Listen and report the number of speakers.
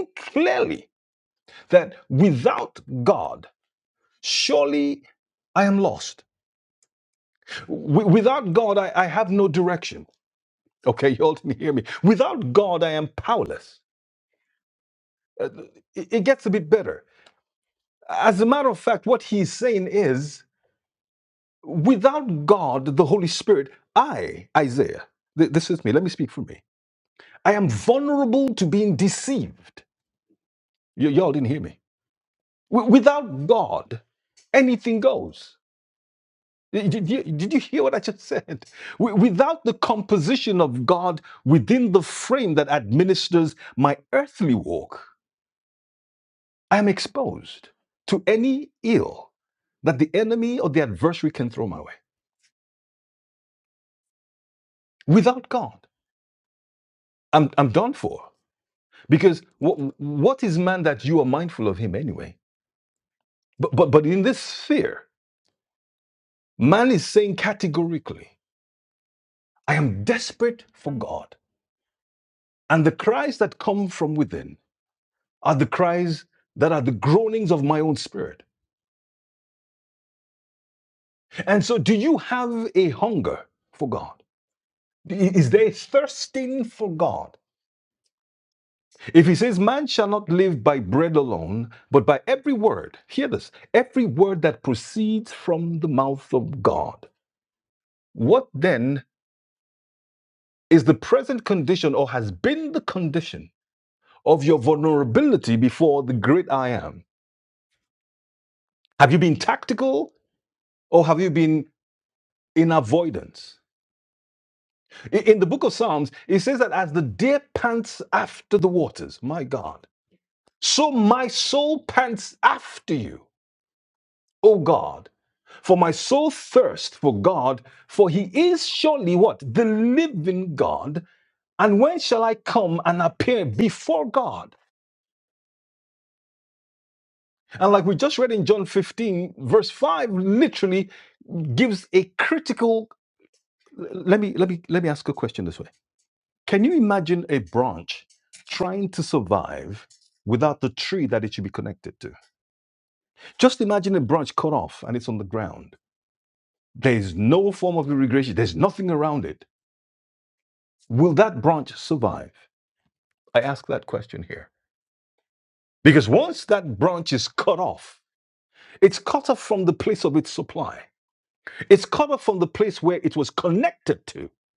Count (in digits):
1